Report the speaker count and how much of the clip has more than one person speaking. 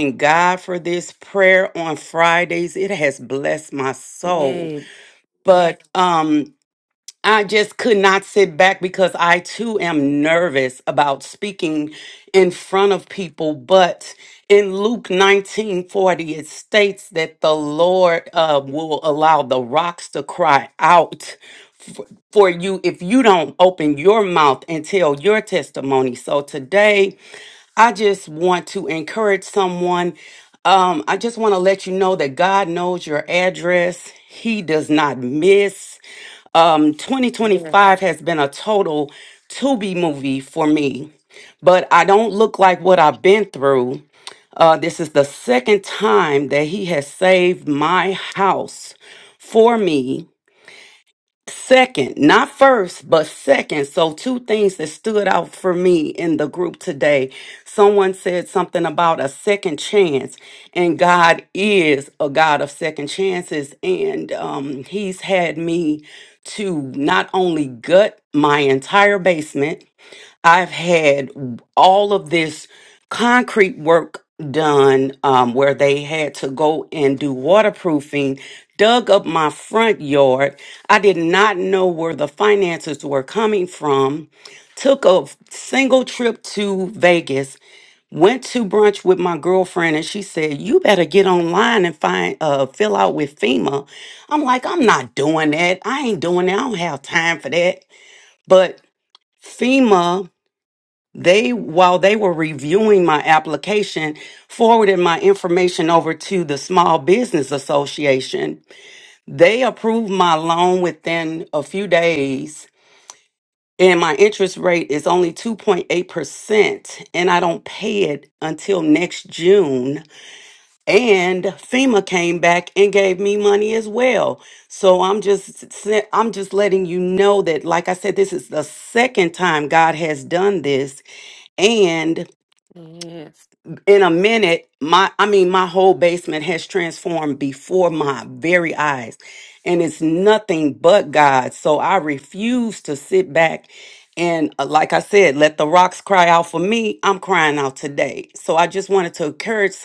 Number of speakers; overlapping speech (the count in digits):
2, about 1%